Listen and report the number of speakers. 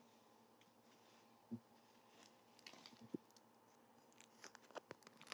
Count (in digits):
0